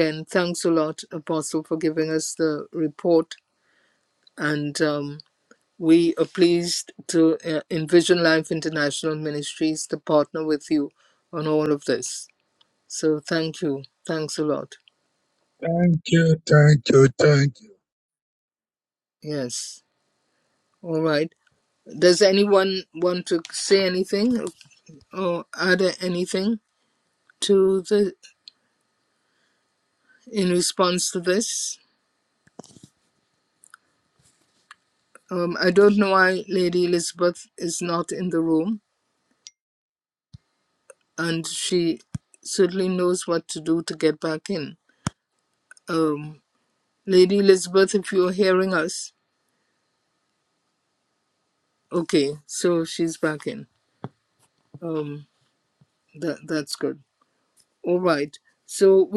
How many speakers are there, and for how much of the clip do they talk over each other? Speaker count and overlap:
2, no overlap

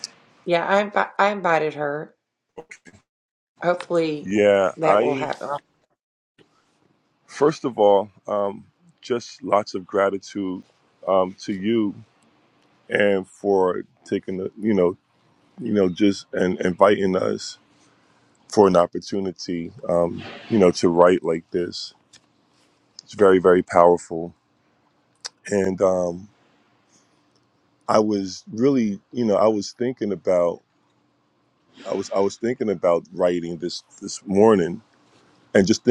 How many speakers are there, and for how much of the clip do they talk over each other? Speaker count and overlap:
2, about 2%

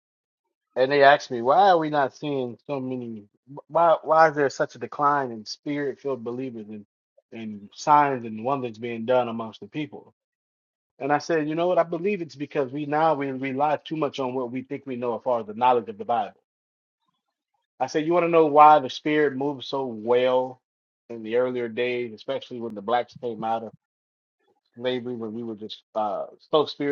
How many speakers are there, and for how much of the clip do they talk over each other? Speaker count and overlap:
1, no overlap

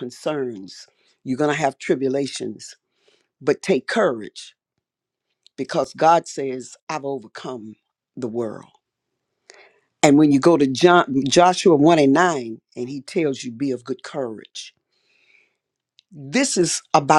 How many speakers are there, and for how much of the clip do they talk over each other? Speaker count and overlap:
1, no overlap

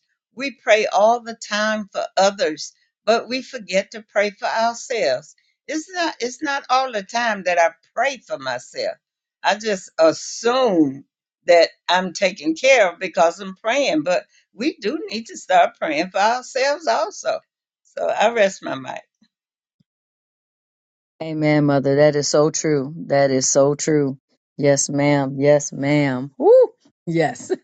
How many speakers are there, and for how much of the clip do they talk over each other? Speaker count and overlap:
2, no overlap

